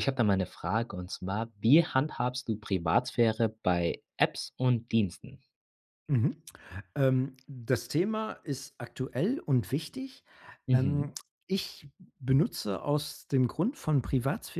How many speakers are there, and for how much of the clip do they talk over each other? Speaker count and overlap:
2, about 2%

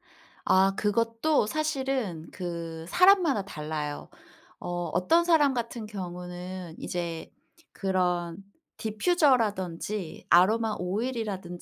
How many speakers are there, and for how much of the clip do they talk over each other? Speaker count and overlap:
1, no overlap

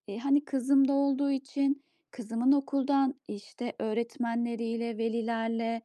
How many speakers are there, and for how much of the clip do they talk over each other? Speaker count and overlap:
1, no overlap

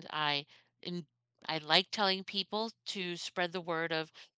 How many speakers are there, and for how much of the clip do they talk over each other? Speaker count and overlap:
1, no overlap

